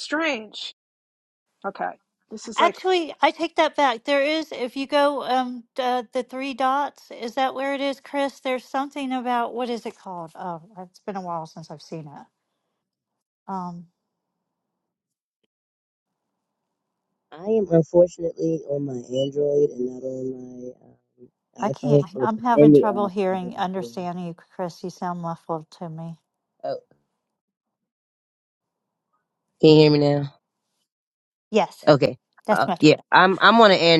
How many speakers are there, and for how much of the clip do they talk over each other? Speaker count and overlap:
three, about 9%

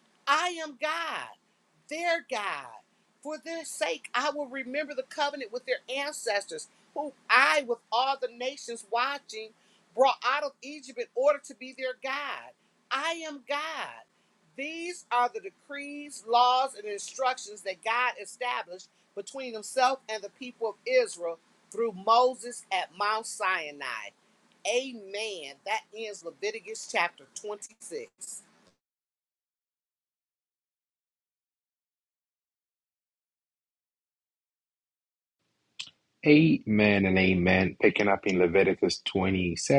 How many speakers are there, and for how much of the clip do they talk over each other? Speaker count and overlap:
two, no overlap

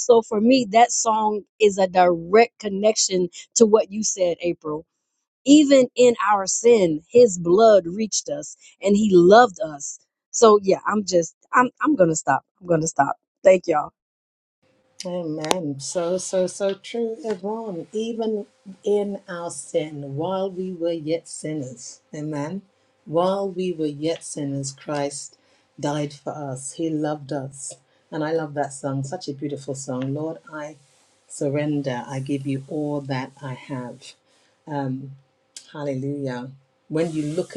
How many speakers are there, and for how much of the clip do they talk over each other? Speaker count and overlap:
two, no overlap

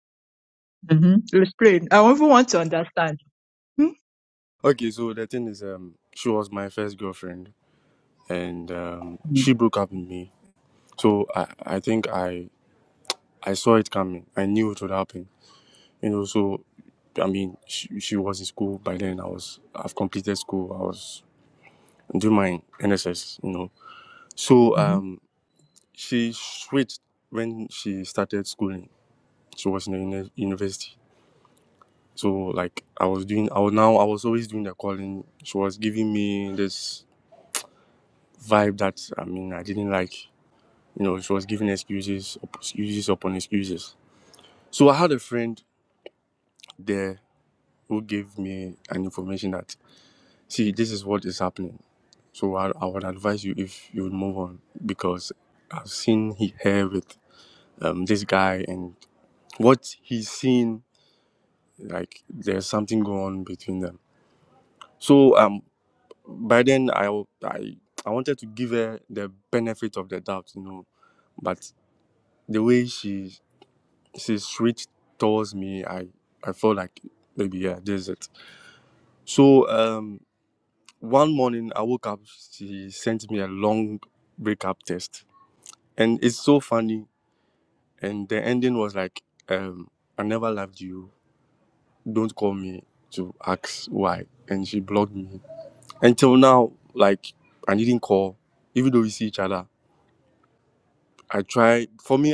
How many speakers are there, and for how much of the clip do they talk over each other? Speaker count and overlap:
two, under 1%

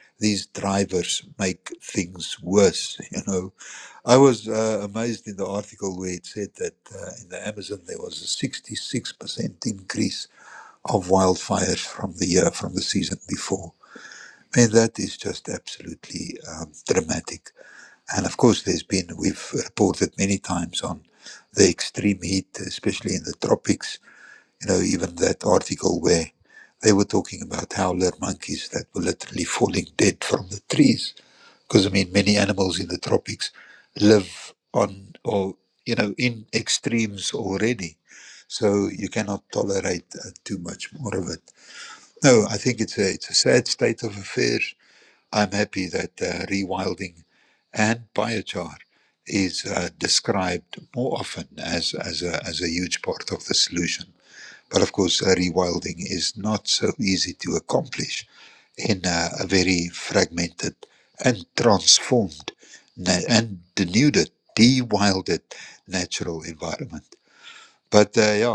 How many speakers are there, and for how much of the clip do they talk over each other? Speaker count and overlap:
one, no overlap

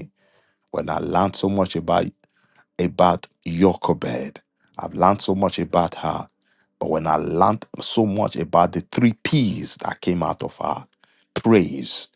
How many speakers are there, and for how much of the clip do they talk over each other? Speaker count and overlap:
one, no overlap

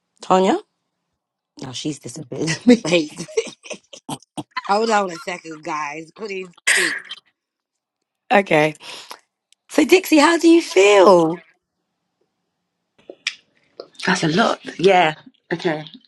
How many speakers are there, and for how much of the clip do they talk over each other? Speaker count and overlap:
three, no overlap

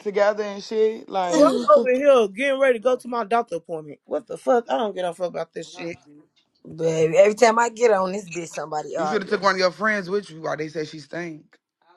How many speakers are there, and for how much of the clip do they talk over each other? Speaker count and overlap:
three, about 6%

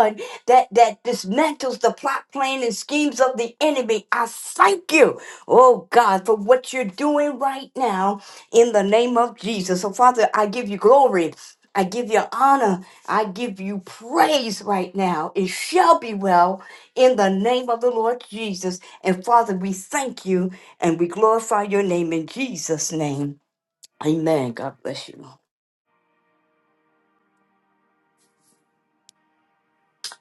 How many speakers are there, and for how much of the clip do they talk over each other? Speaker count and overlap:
one, no overlap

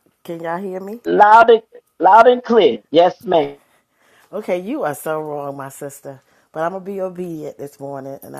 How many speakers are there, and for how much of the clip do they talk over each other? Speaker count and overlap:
two, no overlap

